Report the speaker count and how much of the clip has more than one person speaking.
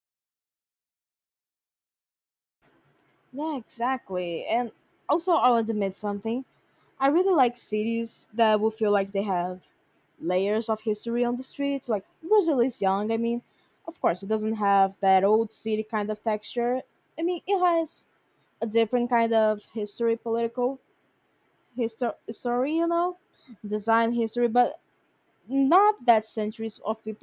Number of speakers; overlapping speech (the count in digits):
1, no overlap